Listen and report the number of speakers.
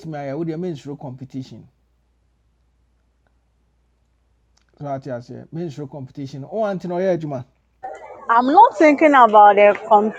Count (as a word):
two